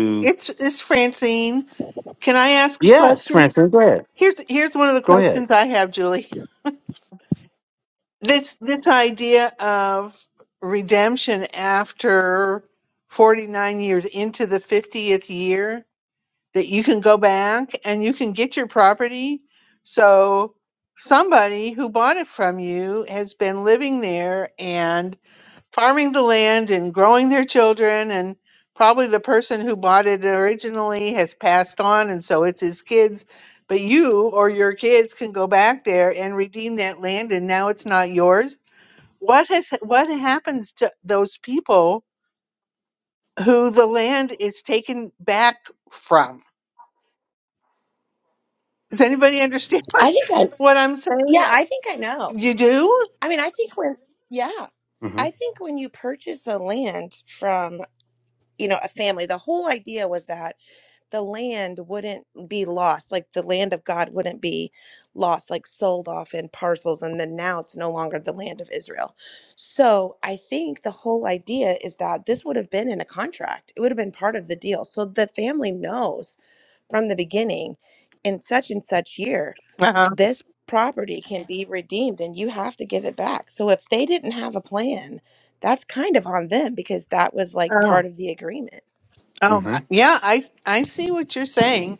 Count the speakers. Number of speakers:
3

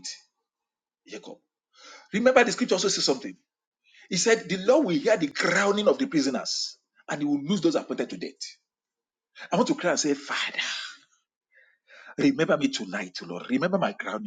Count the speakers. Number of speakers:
1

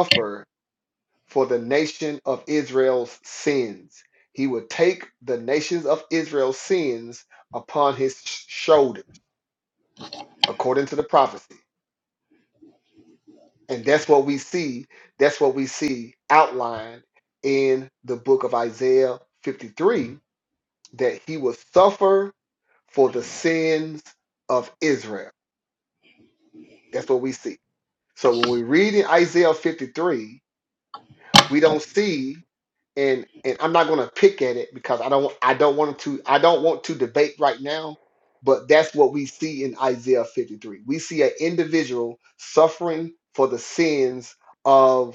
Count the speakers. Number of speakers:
1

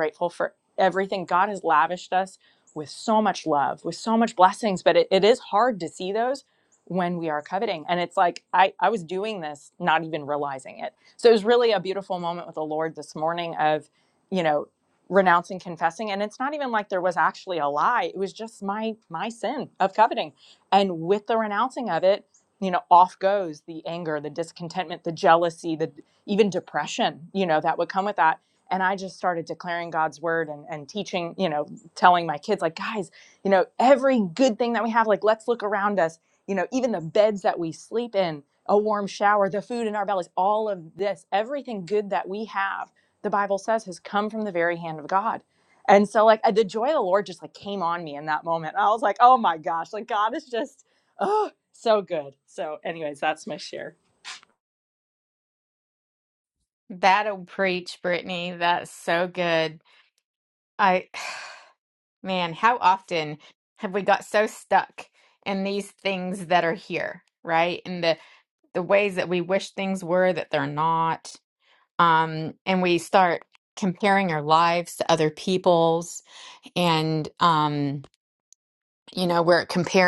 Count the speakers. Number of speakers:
2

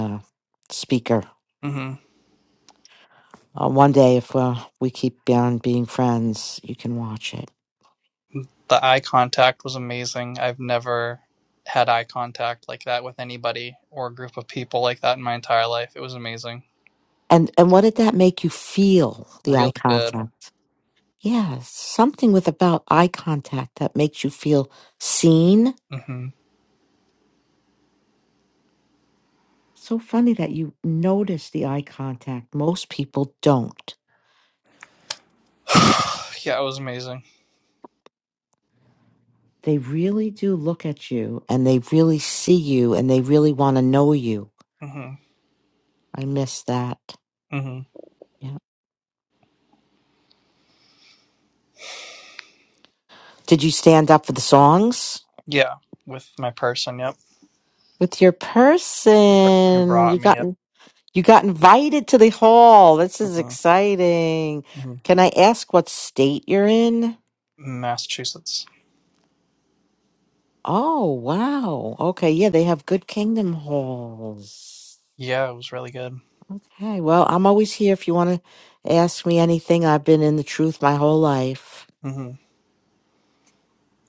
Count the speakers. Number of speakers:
2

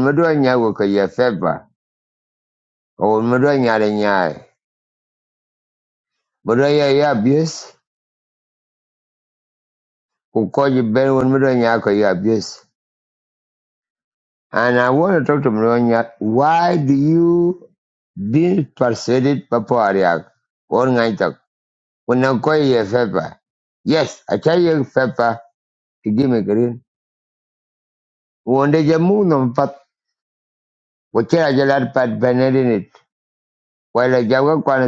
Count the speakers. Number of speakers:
1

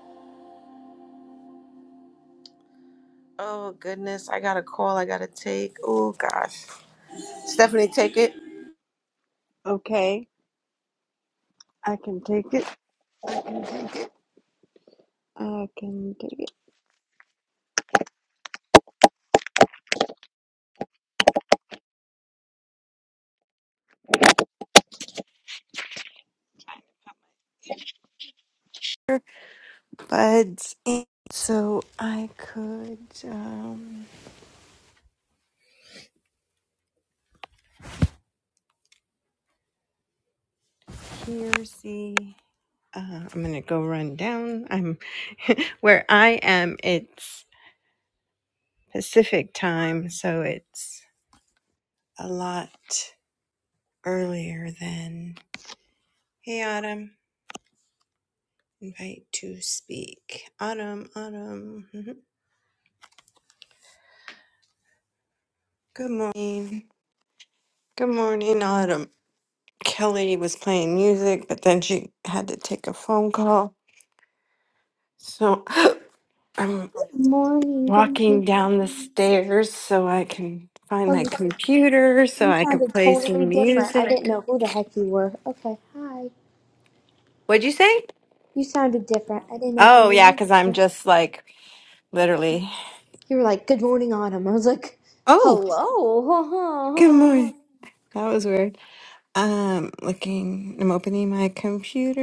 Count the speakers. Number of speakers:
3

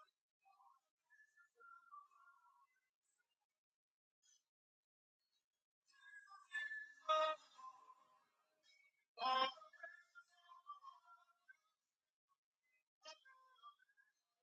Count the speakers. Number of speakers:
0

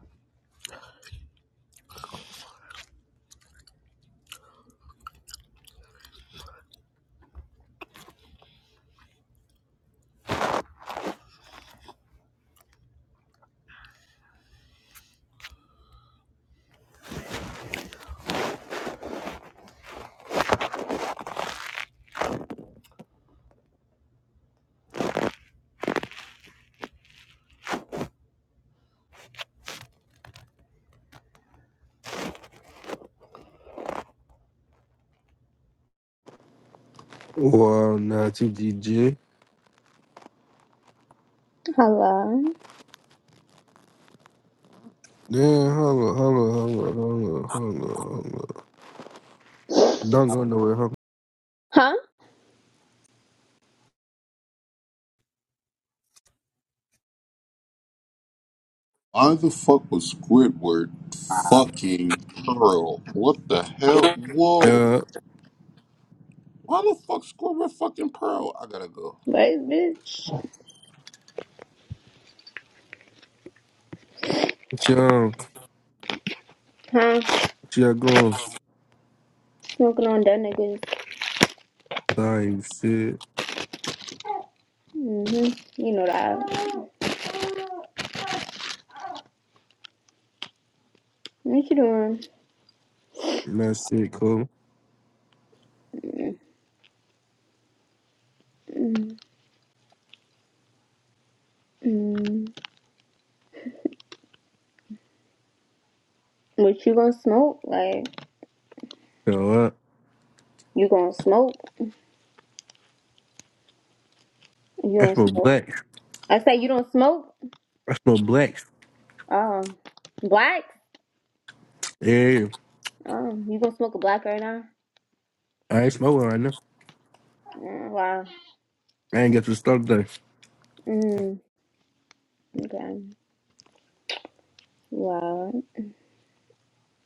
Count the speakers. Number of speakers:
3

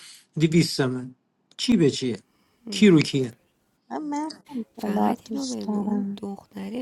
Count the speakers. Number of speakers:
3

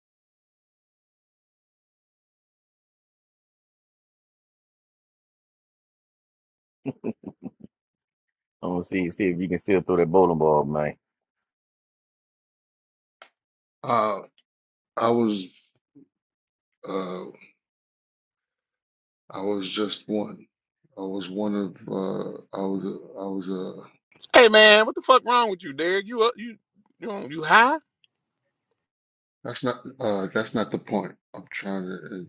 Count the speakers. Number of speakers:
3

